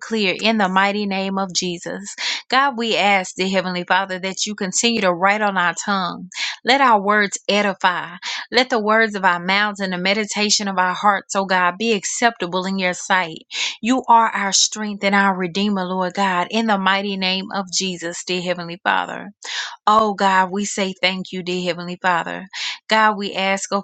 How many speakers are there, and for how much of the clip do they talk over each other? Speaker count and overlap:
one, no overlap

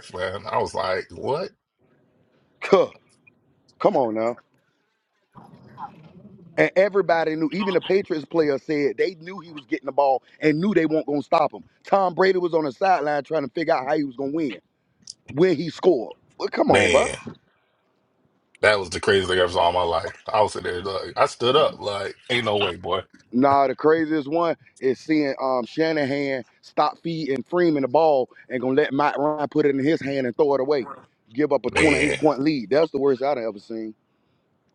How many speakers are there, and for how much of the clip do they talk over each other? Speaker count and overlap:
two, about 3%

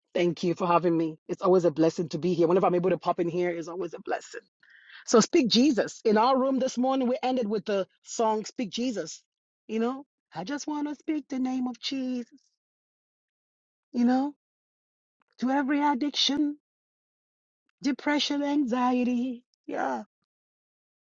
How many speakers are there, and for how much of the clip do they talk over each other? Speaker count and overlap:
one, no overlap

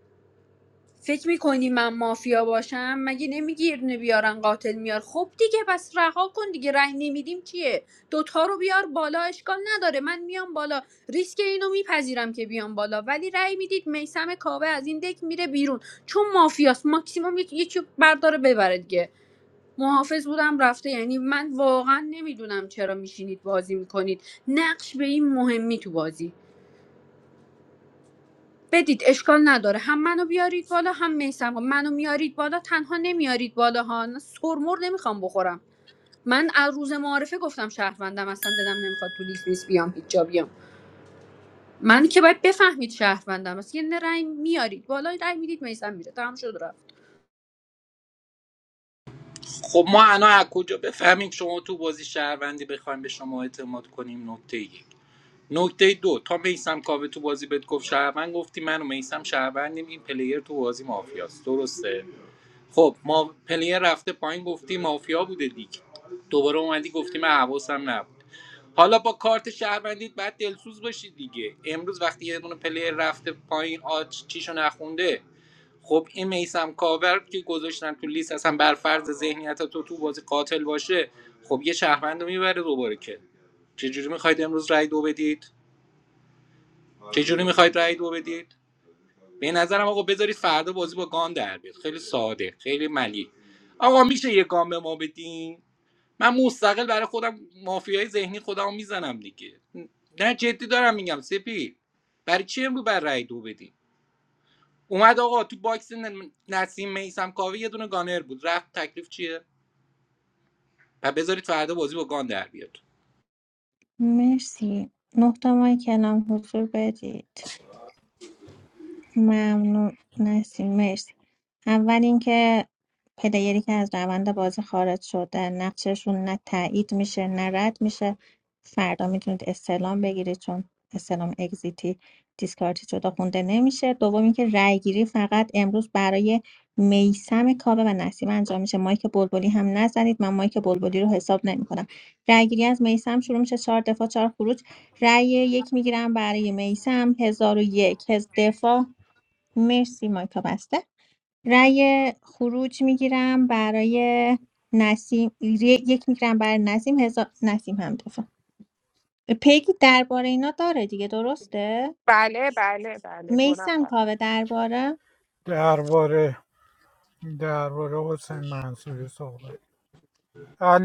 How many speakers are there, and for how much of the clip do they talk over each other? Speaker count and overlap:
five, under 1%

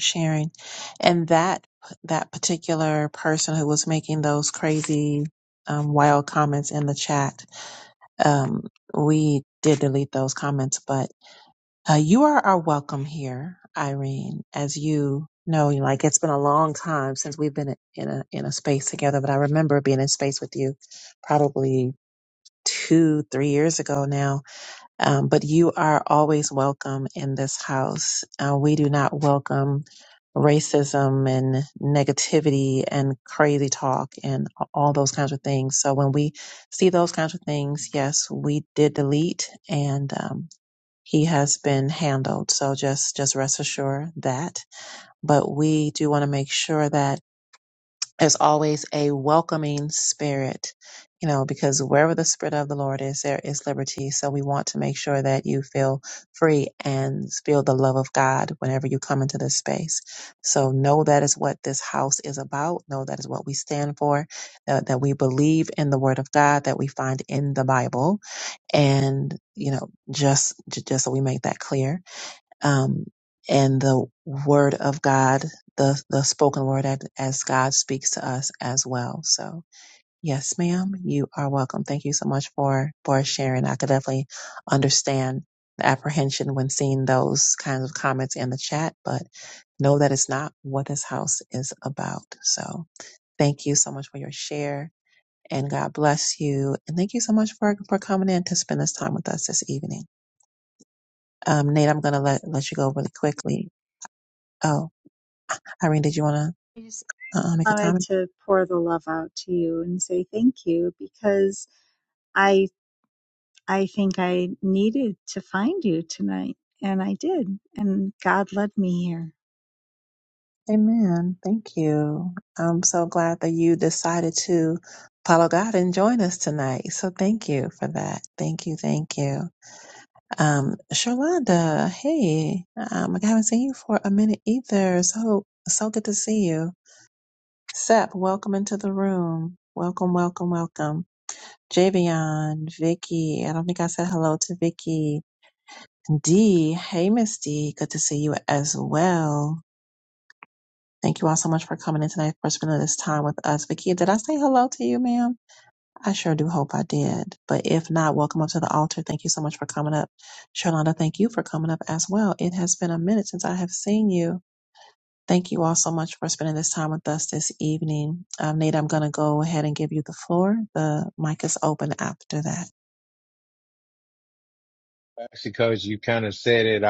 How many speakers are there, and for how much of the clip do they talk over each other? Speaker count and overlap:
three, under 1%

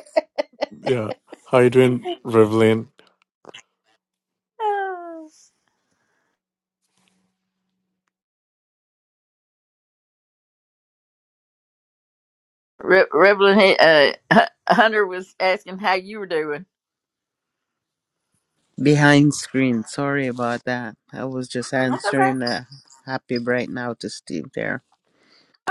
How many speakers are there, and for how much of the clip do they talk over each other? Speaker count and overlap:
three, about 2%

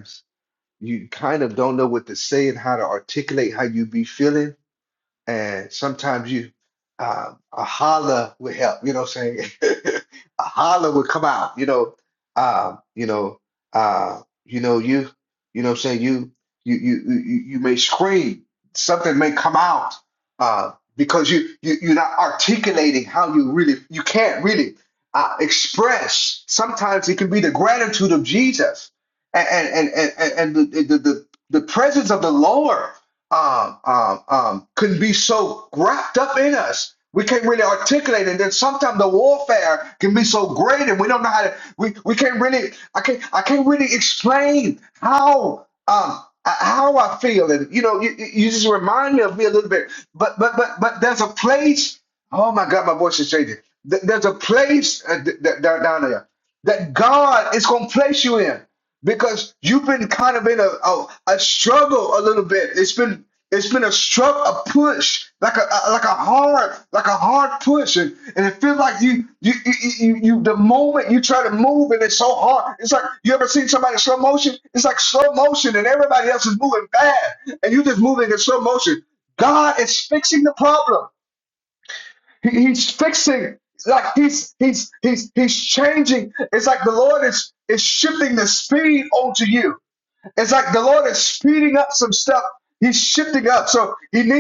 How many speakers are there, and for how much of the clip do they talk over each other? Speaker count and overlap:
one, no overlap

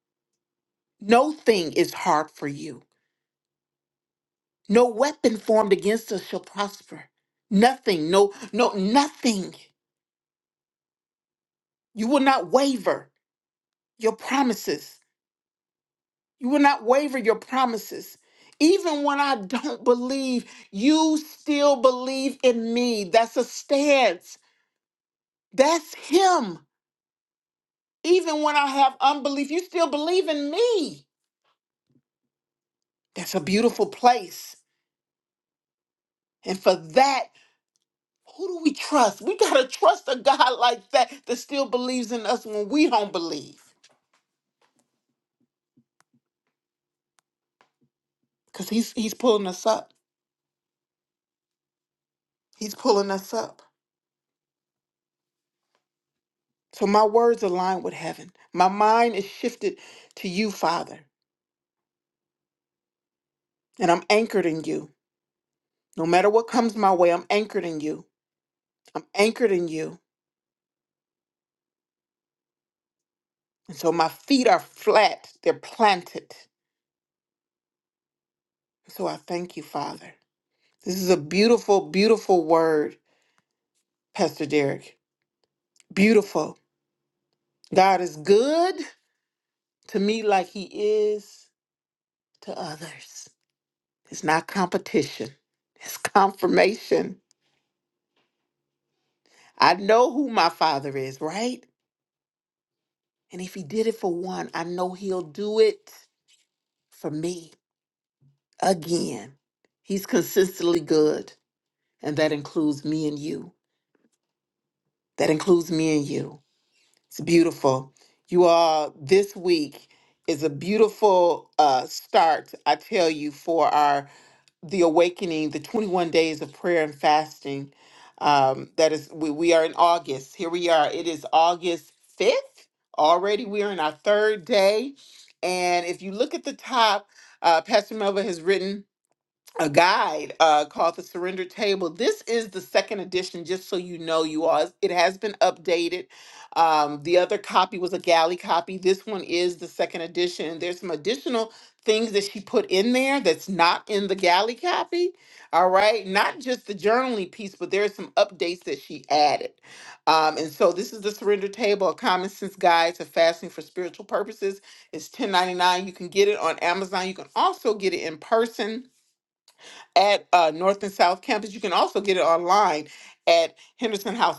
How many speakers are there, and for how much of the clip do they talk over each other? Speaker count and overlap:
one, no overlap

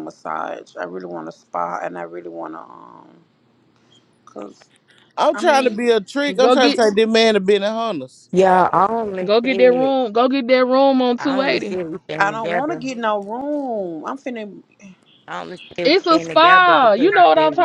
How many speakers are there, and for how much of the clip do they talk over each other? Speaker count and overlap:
four, about 28%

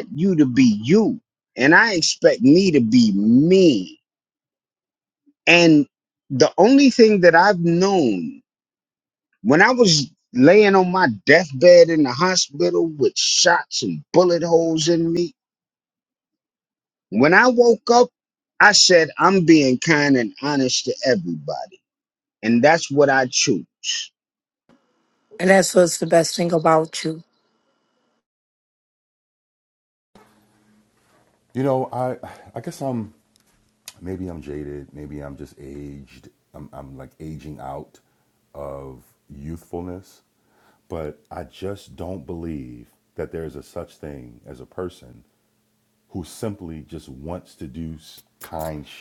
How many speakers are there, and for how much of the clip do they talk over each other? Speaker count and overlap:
three, no overlap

